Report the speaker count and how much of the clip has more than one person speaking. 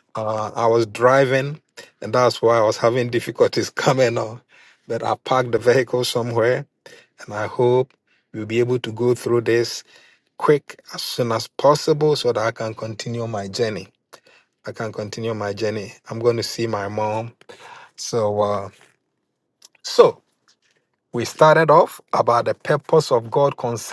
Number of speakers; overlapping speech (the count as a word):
one, no overlap